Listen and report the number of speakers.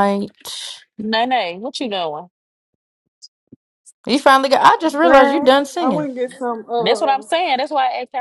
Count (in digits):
3